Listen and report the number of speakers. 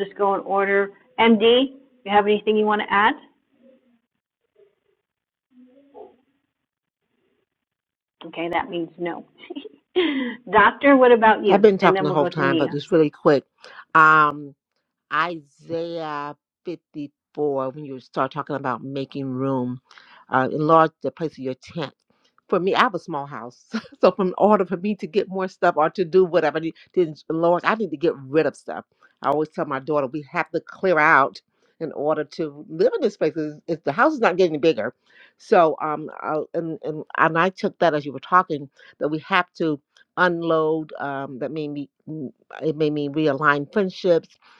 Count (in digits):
2